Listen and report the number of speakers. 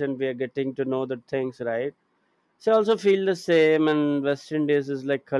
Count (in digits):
1